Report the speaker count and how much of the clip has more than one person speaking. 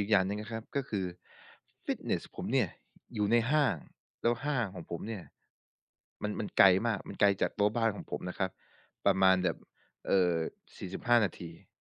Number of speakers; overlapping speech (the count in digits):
1, no overlap